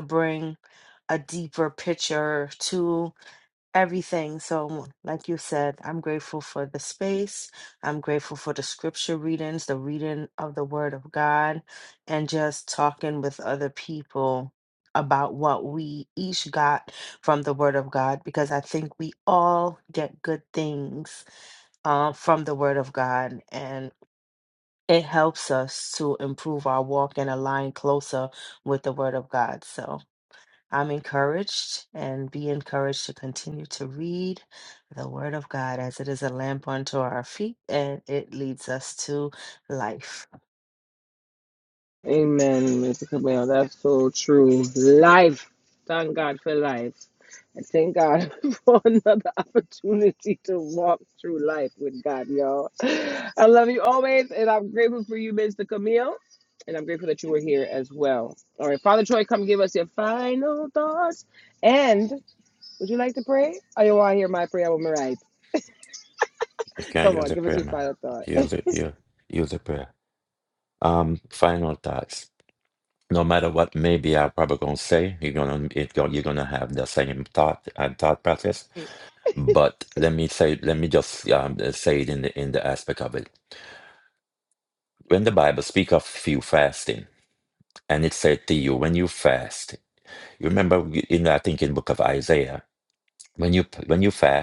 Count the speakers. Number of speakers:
3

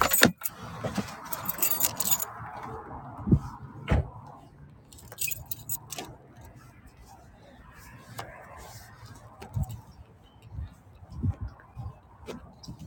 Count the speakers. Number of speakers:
0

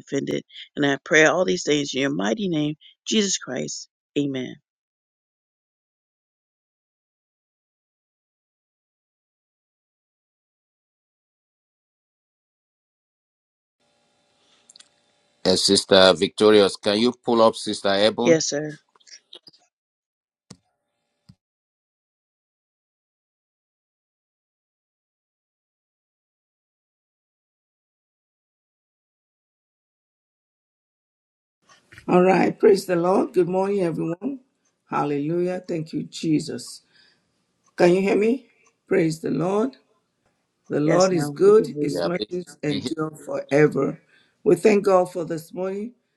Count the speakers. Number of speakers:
3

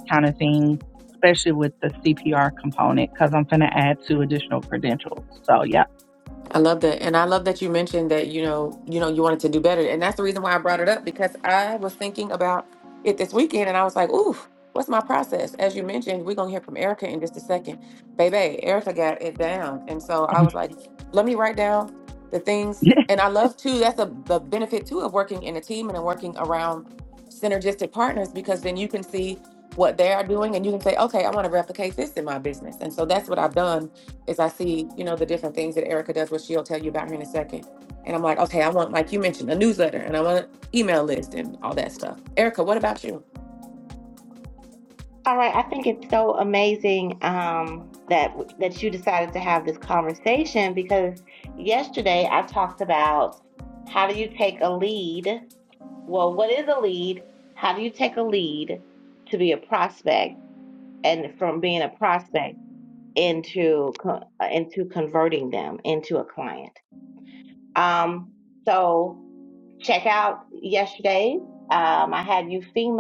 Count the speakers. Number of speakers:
3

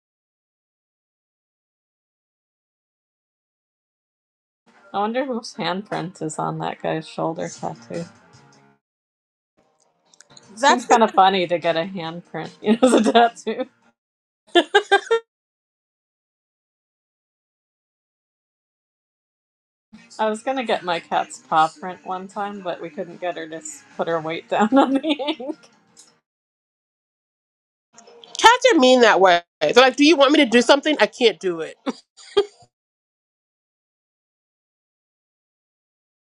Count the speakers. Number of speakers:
2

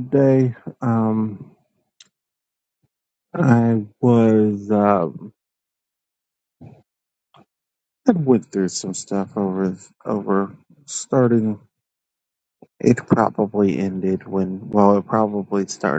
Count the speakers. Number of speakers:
1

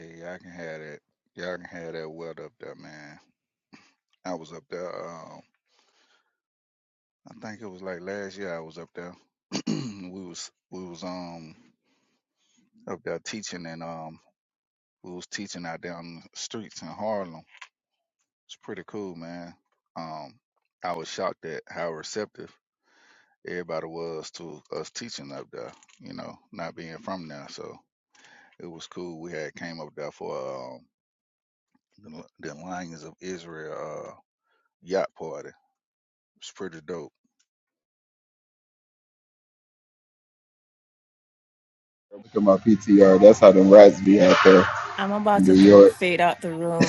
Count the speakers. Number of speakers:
3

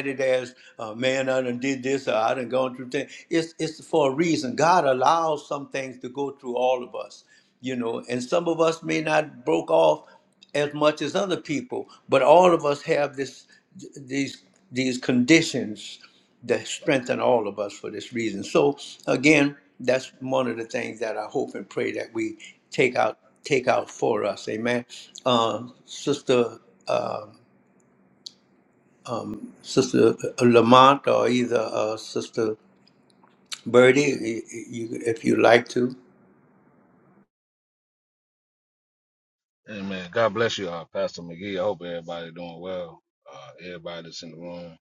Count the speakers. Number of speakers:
2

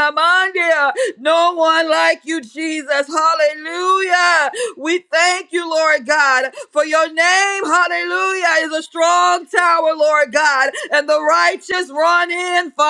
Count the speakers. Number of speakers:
1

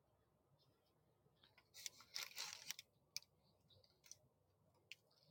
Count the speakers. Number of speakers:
0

